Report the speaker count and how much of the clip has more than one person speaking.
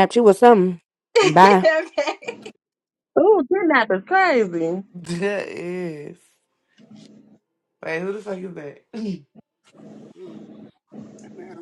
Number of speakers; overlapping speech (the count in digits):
4, about 3%